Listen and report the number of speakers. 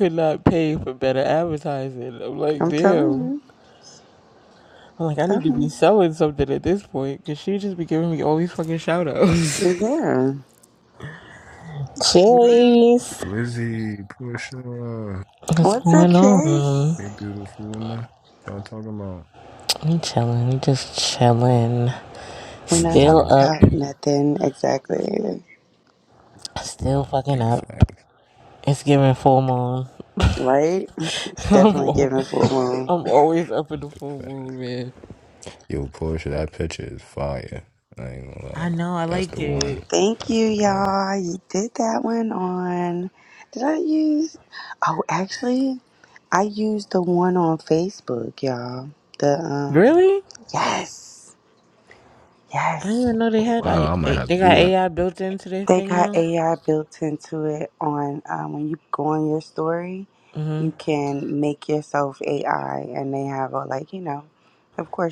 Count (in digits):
3